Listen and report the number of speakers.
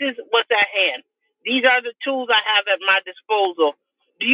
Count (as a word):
one